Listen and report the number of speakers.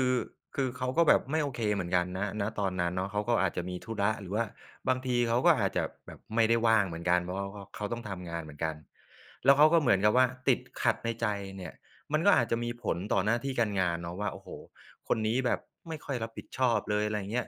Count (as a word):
one